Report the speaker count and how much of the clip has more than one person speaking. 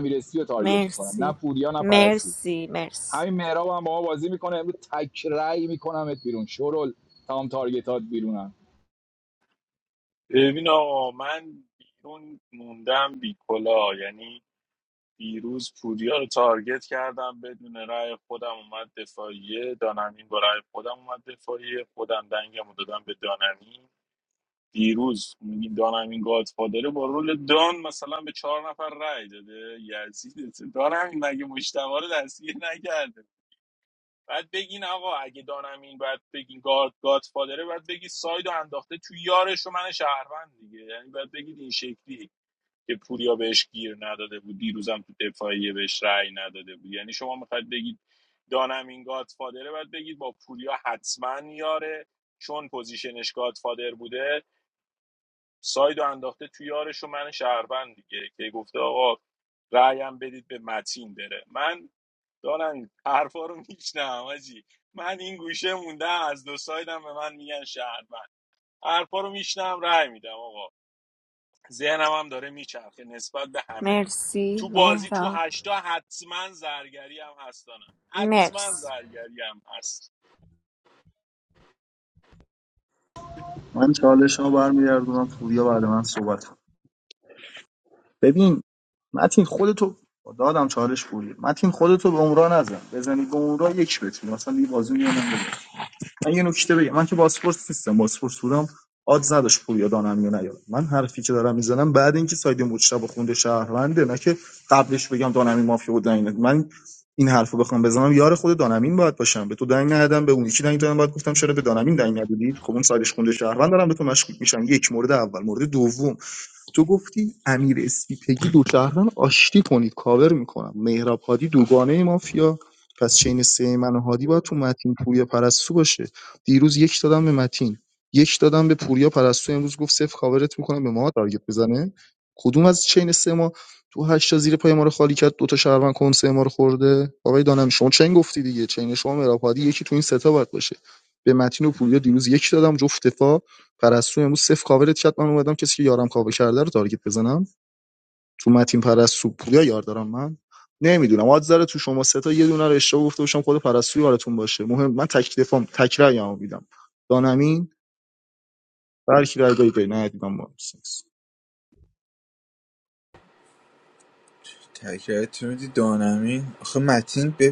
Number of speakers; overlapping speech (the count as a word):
five, about 2%